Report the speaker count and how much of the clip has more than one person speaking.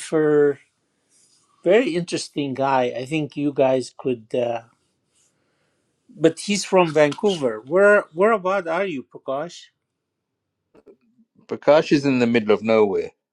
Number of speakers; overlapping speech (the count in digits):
2, no overlap